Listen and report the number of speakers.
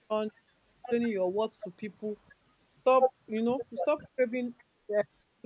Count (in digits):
1